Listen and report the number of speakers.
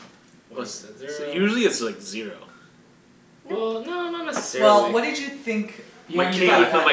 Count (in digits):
3